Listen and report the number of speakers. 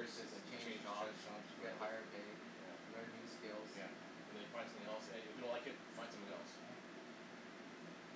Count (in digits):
2